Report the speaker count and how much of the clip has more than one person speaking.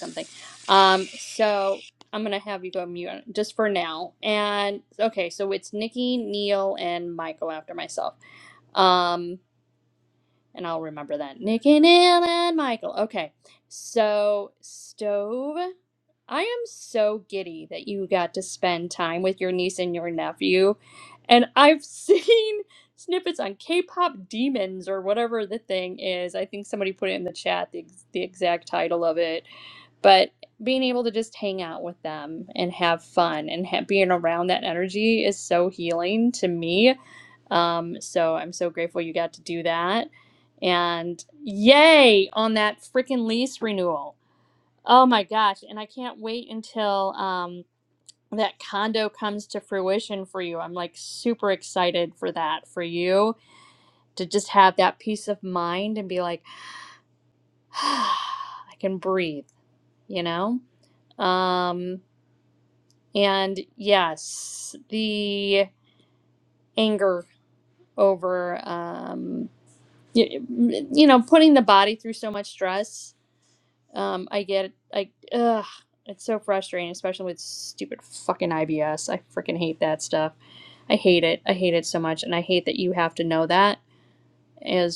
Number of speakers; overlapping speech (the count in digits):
1, no overlap